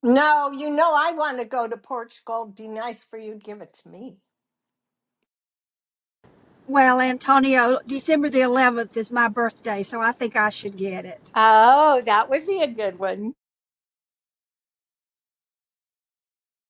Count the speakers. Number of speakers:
3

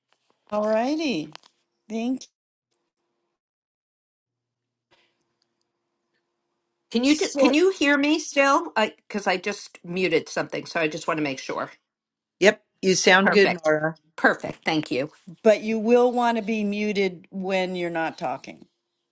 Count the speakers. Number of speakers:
3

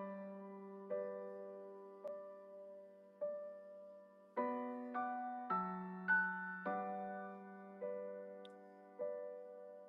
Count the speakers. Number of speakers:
0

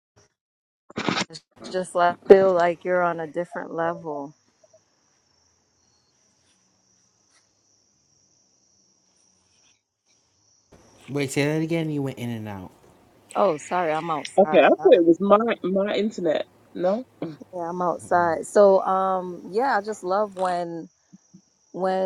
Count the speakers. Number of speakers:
3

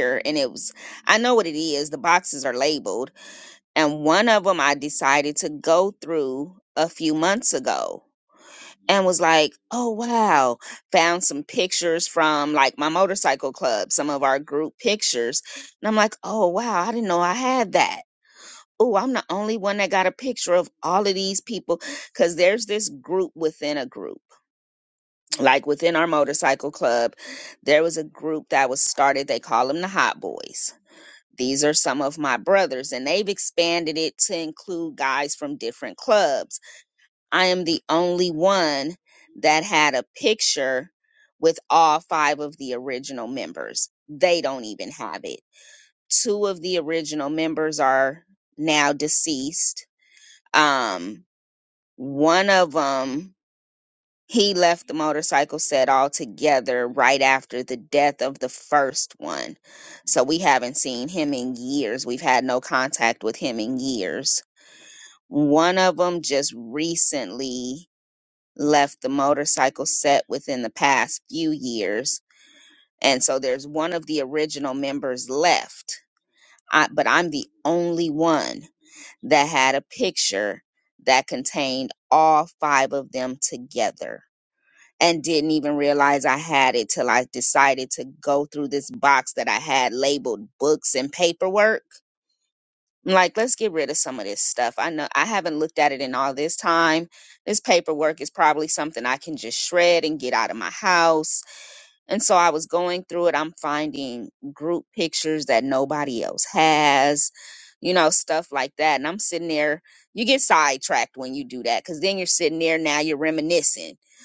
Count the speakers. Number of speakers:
1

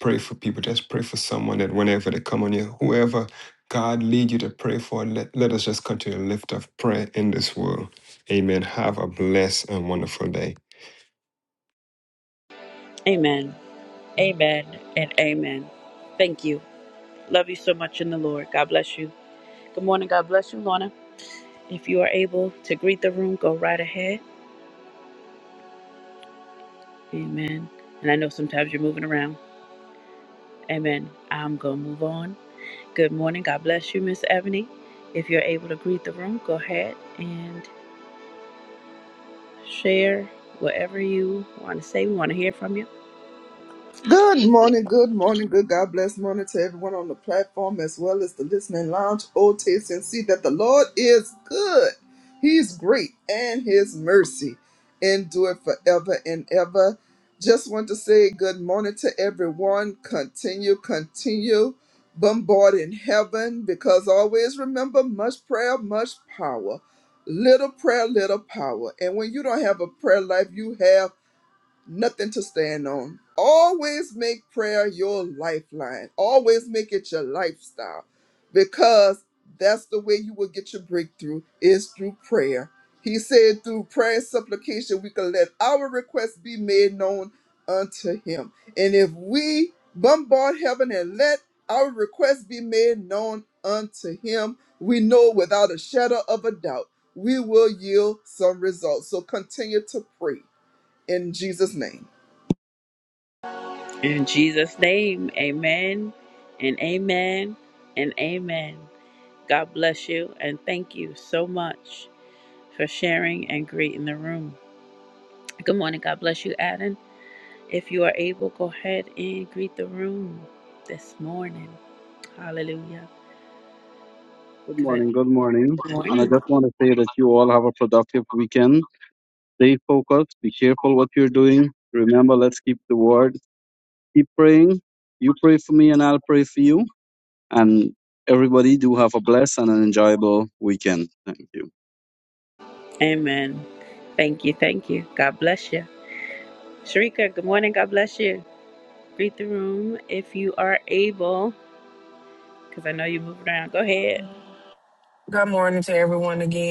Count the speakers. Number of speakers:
5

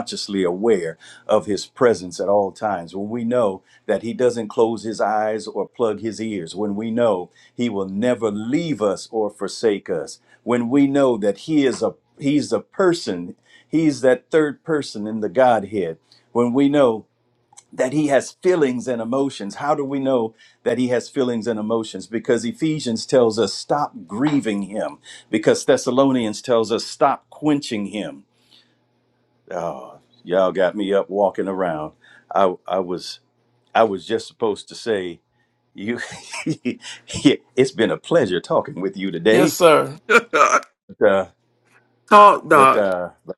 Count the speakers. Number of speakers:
2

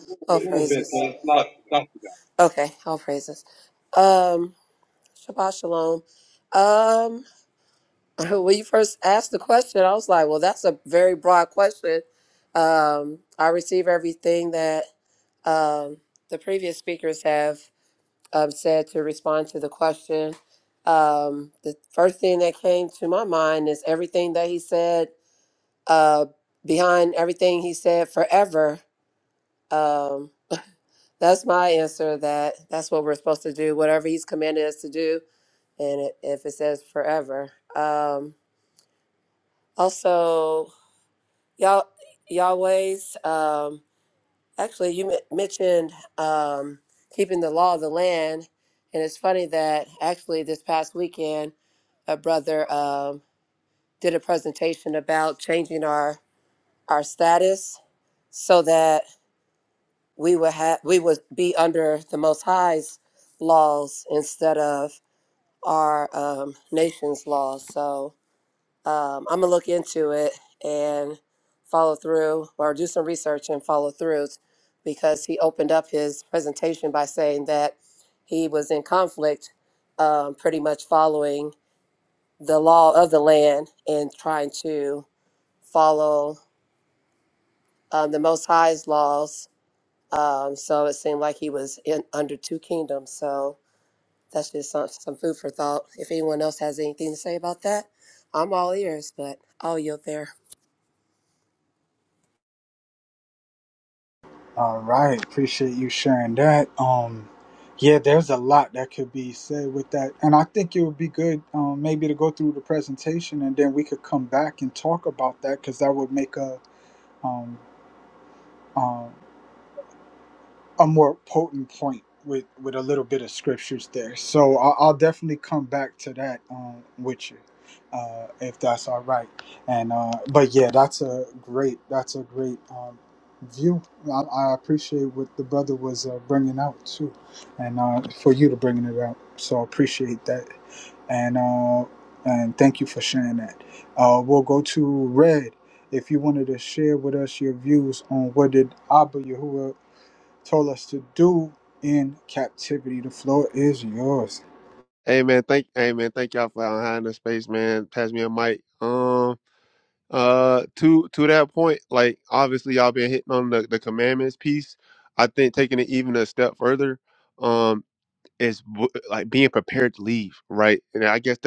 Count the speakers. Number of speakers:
4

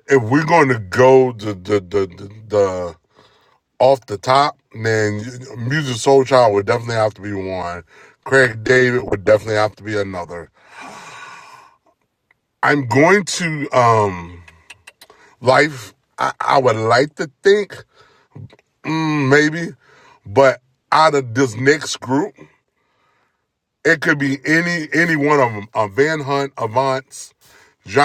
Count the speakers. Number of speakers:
1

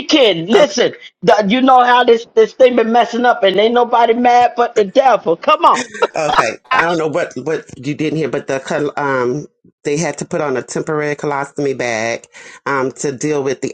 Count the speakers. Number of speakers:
2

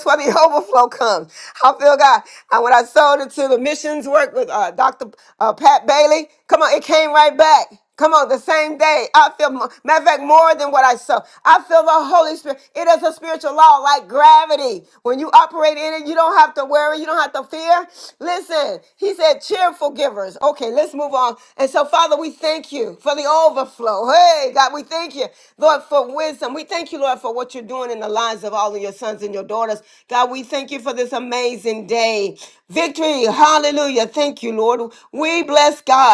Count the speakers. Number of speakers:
1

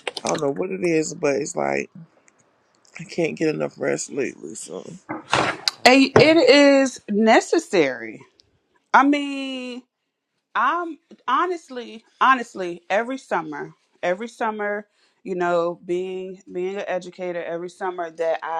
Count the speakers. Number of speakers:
2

